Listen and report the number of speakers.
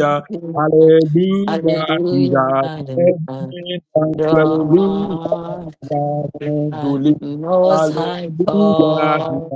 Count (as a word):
two